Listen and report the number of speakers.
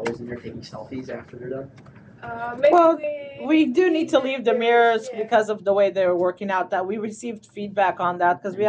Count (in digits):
3